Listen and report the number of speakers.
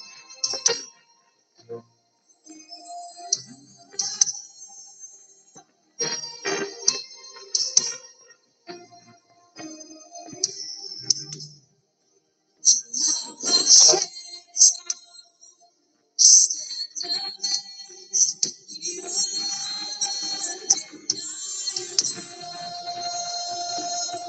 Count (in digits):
0